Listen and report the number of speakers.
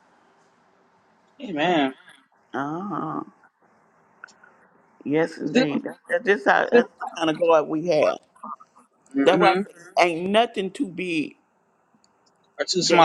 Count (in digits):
2